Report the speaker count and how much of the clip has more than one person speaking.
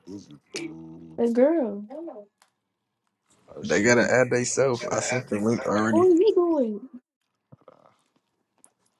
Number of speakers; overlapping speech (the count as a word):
three, about 7%